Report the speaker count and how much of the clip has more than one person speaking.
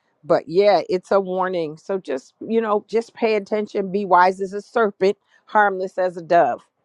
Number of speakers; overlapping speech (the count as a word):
one, no overlap